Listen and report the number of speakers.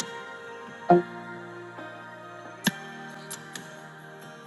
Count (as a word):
zero